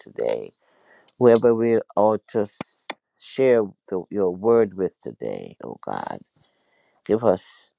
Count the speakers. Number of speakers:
one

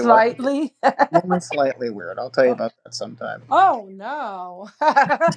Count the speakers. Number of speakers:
two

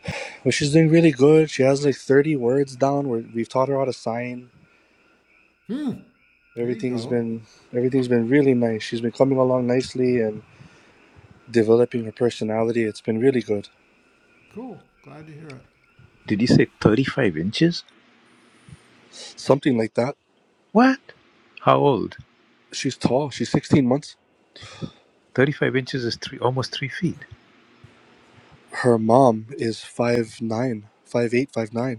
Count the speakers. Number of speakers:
three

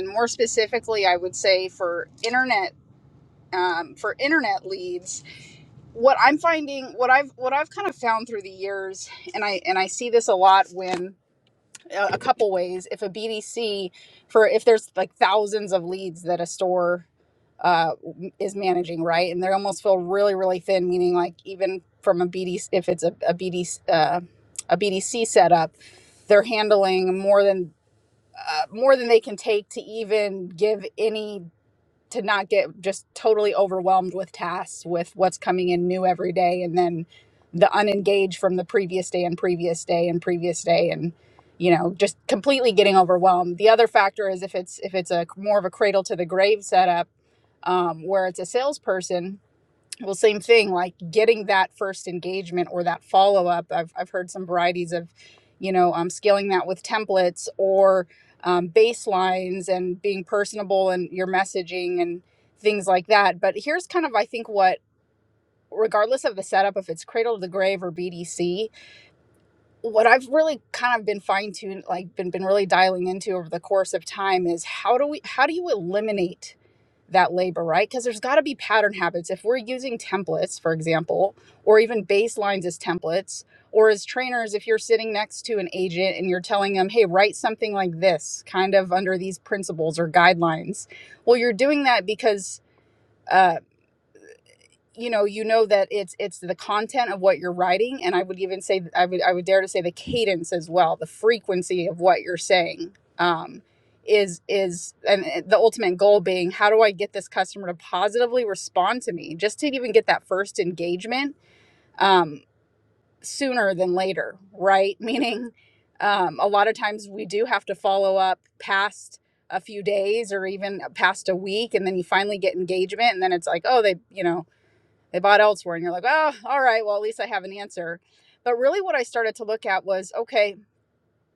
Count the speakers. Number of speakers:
one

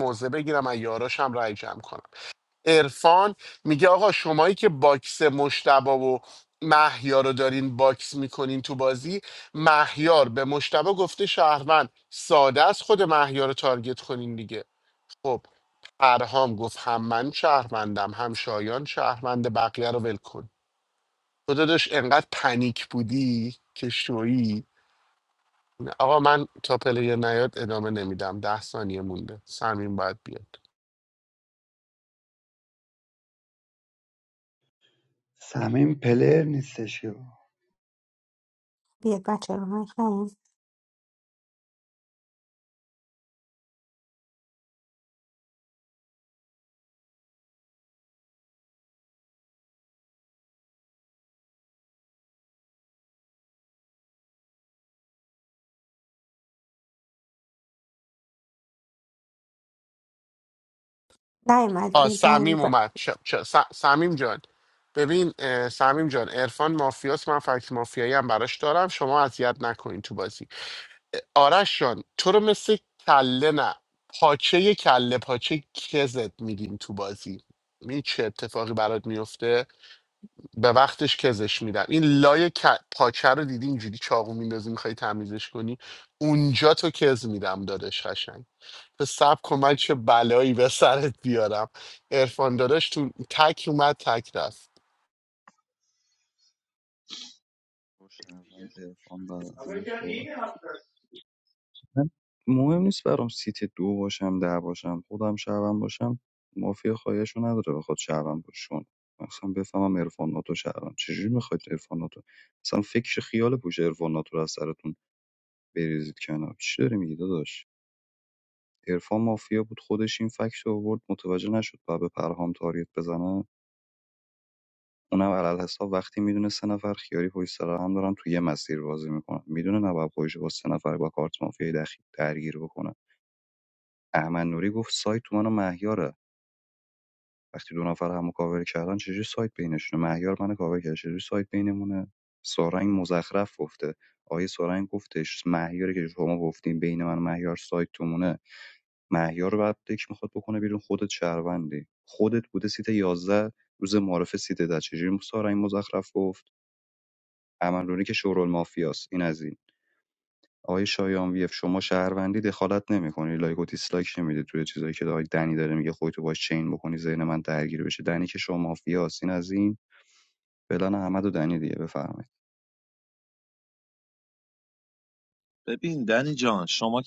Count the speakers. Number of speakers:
five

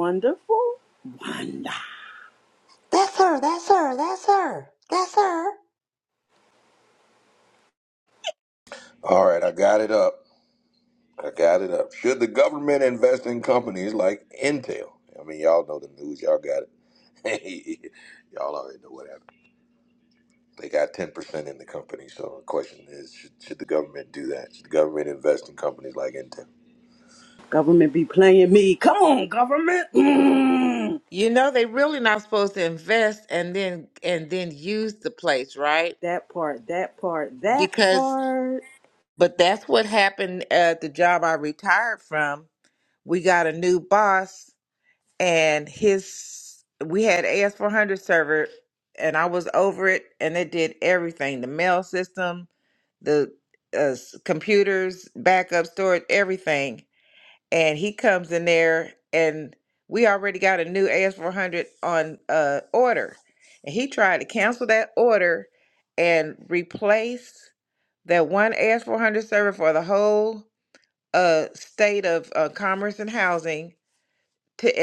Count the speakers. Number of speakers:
four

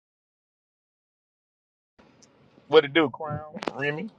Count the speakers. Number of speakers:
one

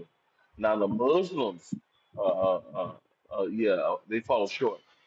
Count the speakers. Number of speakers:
one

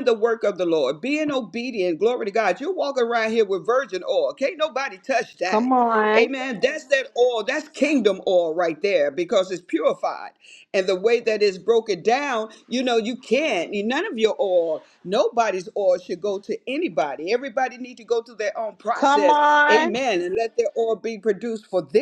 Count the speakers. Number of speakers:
two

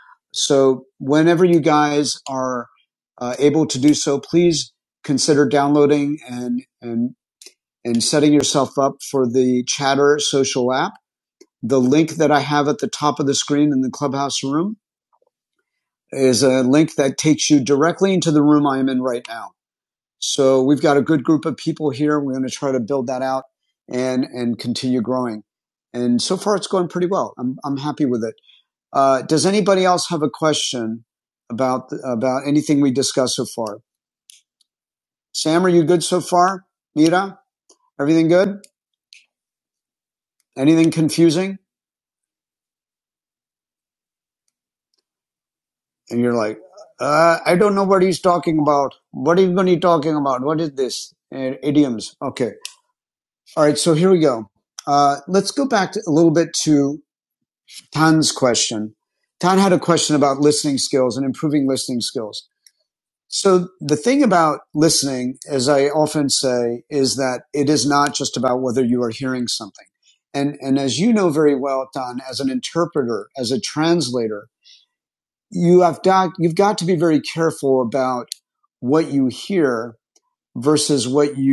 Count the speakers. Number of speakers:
one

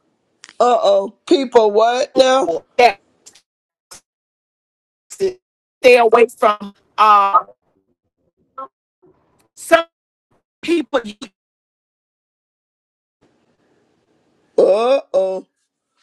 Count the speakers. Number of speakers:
two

